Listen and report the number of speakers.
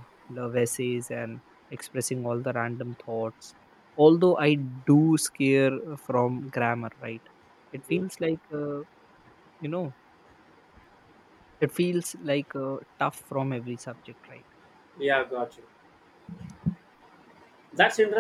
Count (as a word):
two